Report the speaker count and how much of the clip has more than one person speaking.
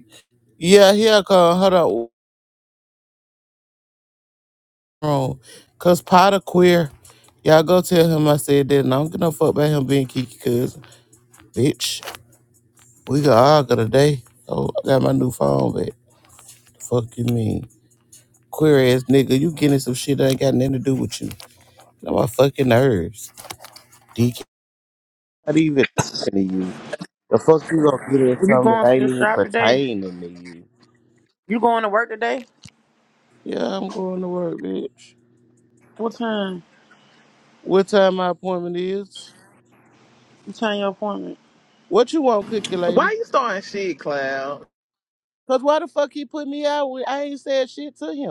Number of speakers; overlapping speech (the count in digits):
3, about 4%